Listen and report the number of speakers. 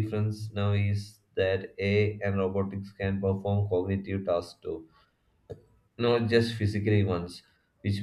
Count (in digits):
1